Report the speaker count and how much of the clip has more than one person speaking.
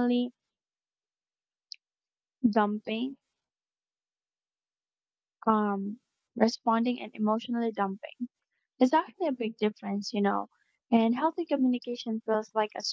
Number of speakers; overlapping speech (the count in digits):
1, no overlap